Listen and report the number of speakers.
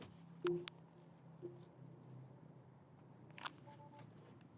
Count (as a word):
zero